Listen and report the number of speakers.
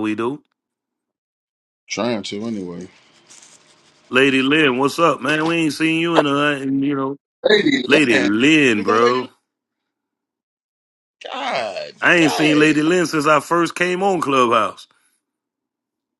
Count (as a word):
two